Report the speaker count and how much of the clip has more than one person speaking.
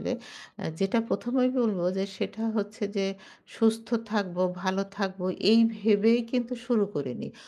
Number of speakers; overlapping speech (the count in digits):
1, no overlap